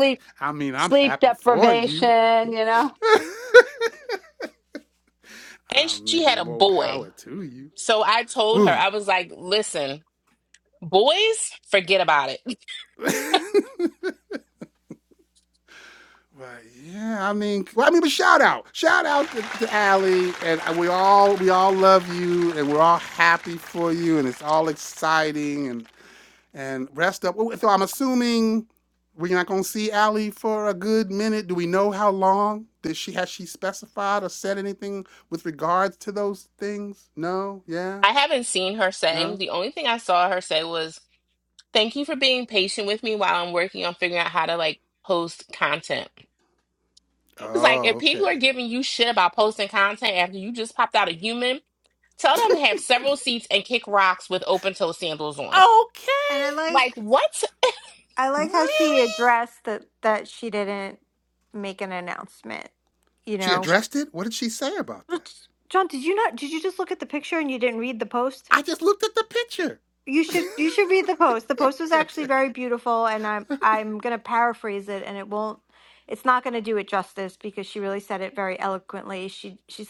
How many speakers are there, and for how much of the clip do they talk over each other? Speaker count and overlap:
4, about 8%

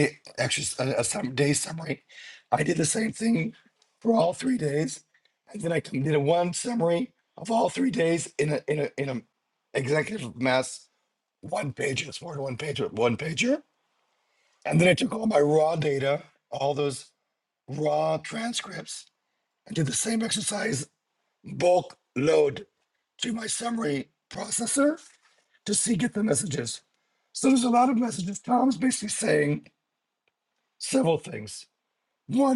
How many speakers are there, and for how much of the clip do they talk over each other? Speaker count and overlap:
1, no overlap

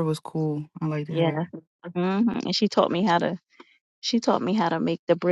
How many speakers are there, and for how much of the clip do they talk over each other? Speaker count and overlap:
2, about 5%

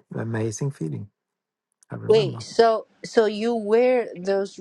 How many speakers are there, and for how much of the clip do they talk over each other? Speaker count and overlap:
2, about 7%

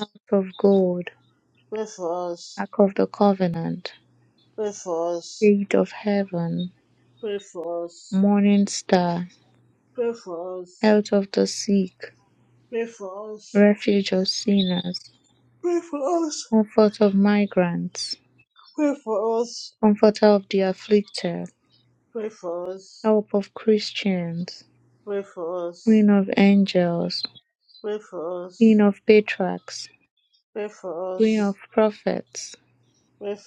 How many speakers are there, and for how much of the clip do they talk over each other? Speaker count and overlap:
2, under 1%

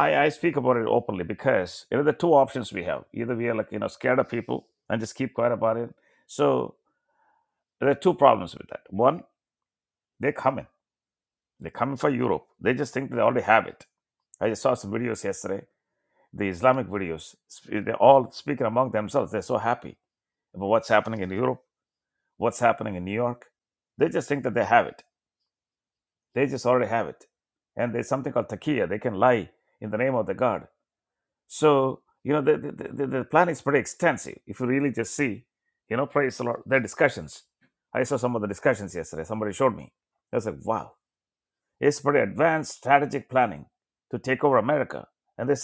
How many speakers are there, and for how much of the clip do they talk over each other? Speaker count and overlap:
1, no overlap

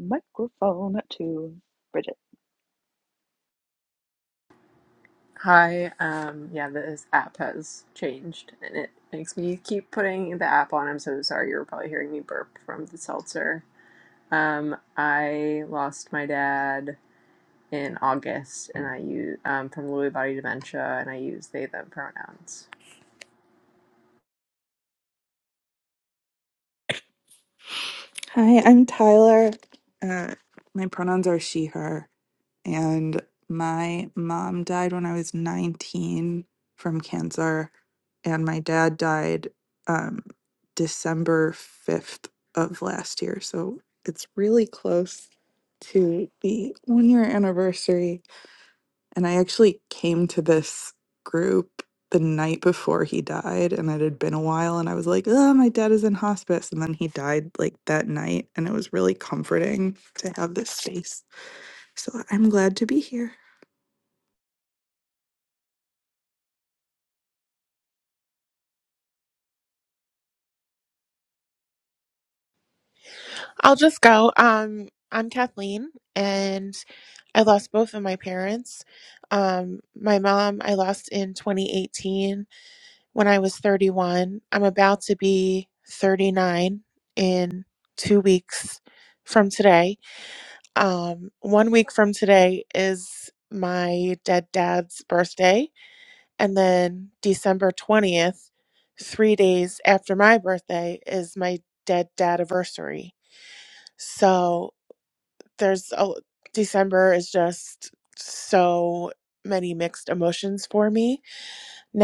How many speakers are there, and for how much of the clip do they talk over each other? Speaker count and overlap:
4, no overlap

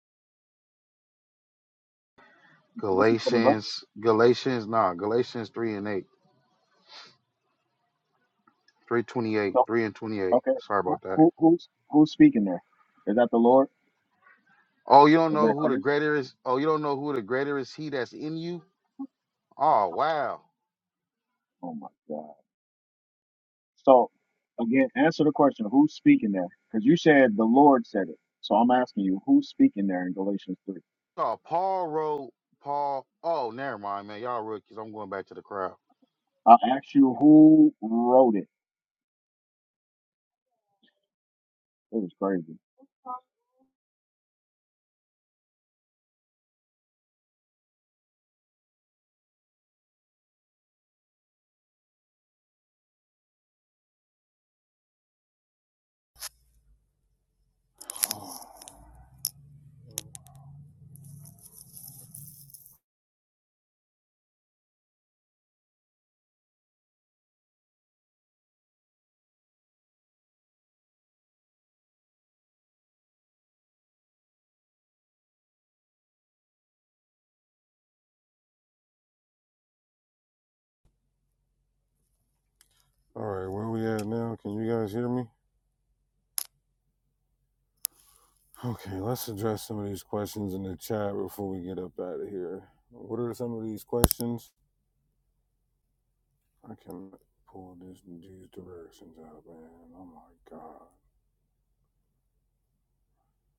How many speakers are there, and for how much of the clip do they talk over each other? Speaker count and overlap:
3, about 2%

